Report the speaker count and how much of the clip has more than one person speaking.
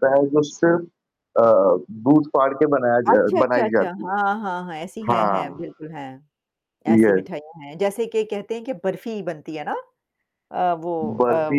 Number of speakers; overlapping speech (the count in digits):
2, about 19%